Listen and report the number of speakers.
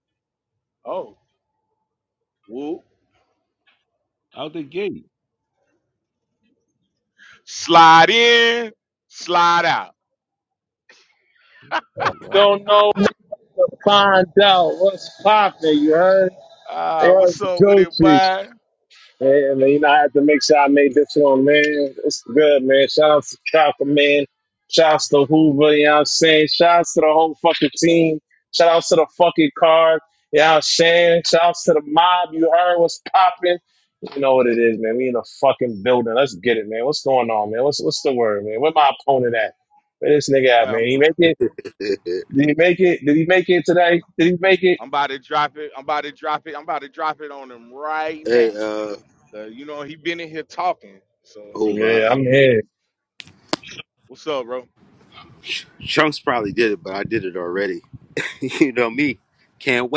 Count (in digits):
4